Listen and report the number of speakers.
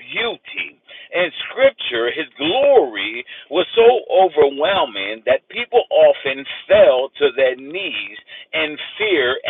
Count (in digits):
1